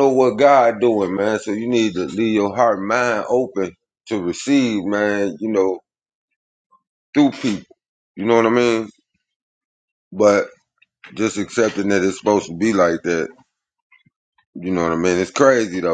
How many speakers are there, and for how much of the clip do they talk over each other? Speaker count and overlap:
1, no overlap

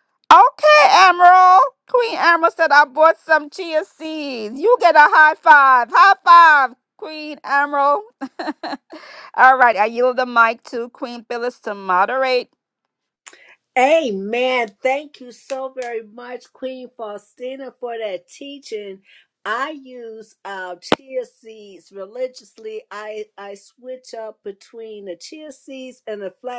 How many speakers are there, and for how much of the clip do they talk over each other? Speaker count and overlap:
2, no overlap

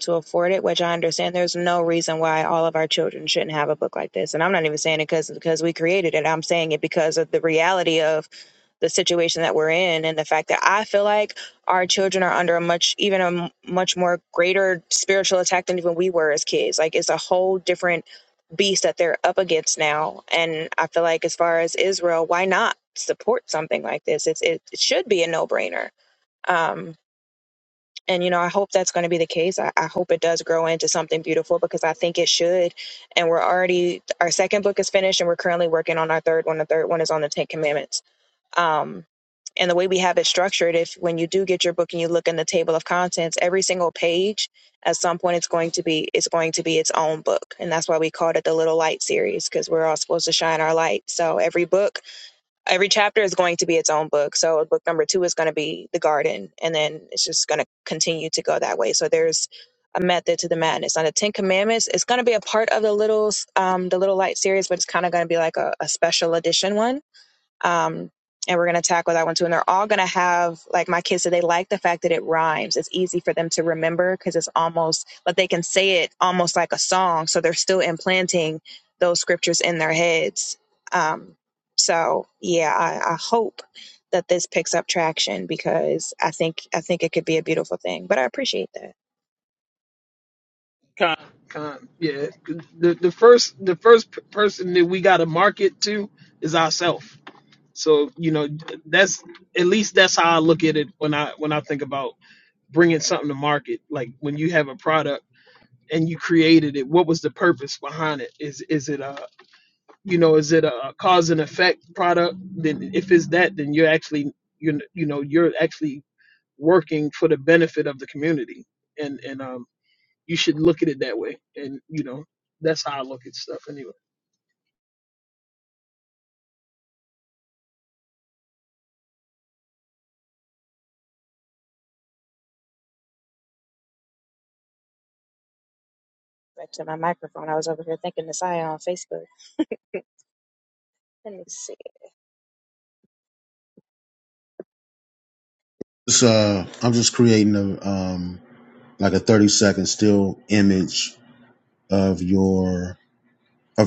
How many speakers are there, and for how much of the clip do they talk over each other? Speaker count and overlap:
3, no overlap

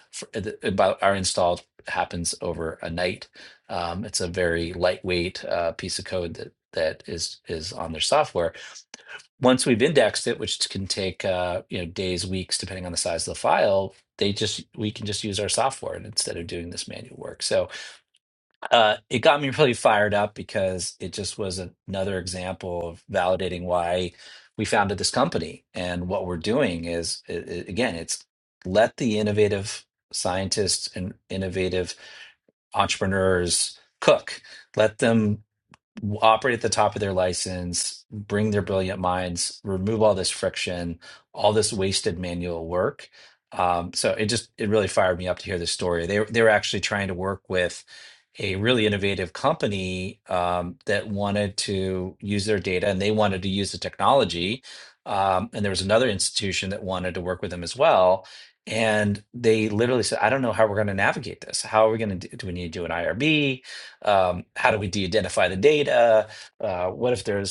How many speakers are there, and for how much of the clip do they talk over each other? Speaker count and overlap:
1, no overlap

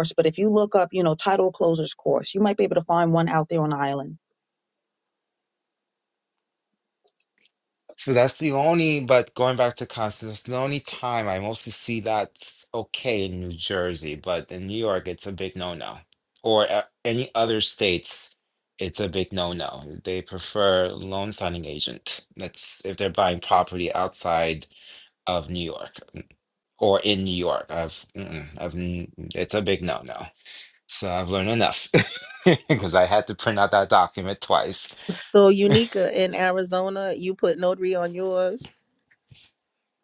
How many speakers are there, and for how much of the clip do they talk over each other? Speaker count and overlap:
3, no overlap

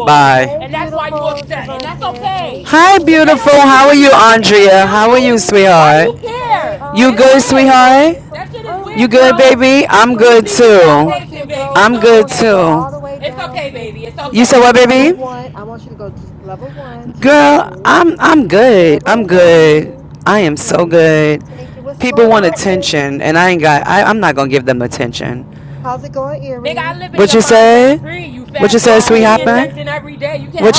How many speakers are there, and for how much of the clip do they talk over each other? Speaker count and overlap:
3, about 66%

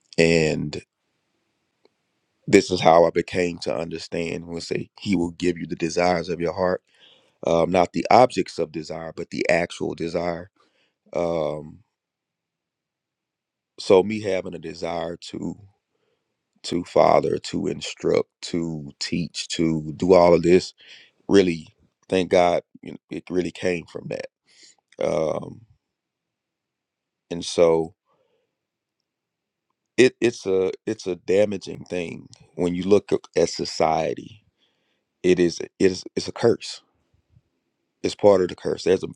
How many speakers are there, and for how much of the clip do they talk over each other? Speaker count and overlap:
1, no overlap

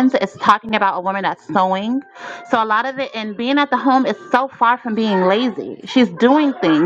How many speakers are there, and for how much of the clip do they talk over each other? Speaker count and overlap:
1, no overlap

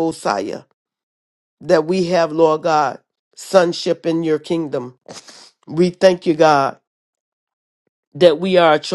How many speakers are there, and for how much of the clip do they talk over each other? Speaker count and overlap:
1, no overlap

